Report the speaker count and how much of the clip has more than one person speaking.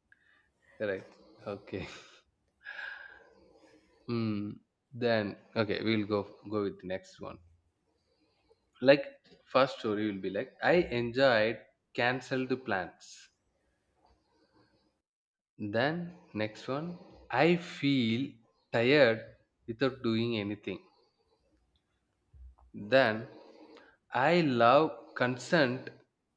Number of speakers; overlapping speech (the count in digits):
1, no overlap